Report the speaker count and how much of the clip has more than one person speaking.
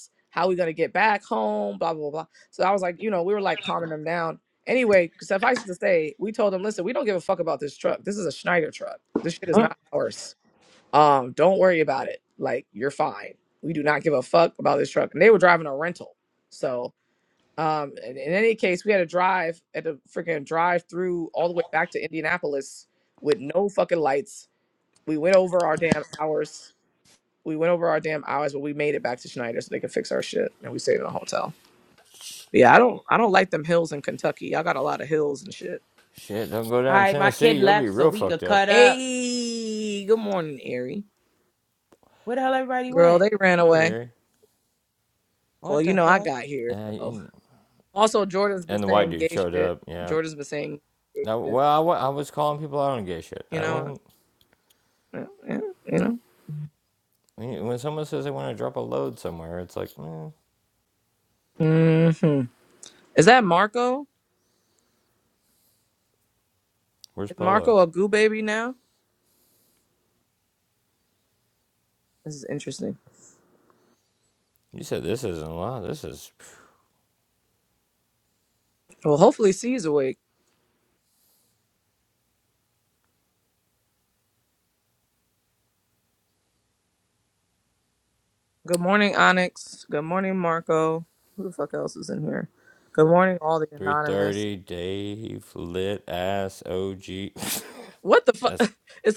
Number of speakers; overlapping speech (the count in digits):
3, about 7%